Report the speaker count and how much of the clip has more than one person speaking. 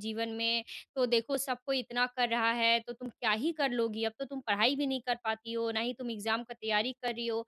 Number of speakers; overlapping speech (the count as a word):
one, no overlap